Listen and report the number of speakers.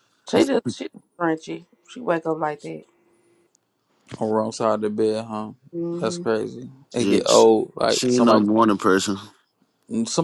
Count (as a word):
three